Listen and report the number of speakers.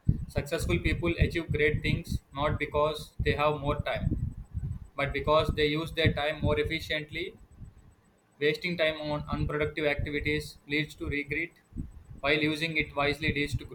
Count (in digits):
1